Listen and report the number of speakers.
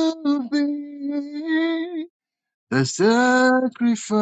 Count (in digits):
1